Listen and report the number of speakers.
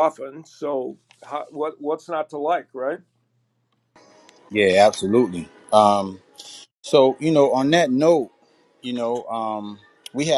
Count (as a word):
two